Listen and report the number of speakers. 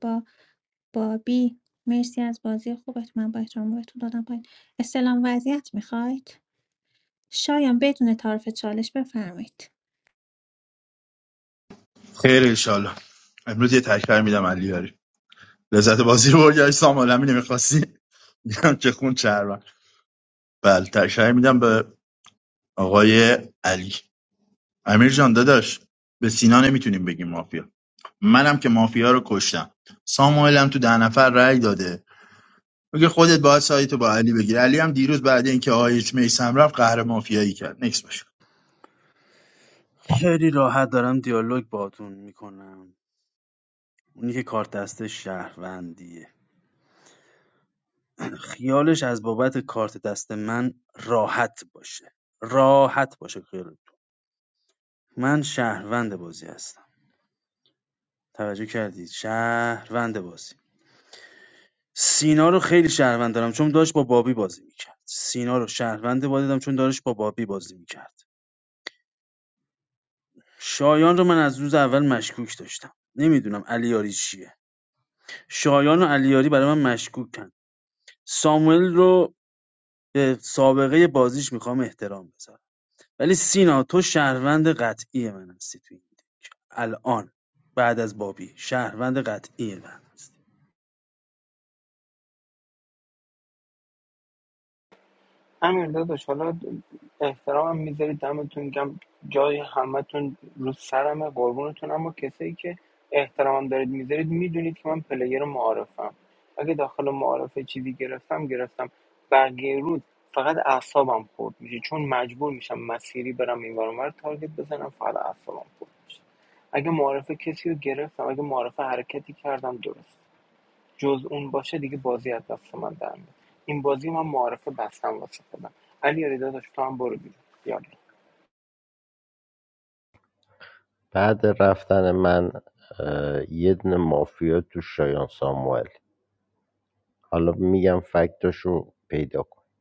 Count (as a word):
five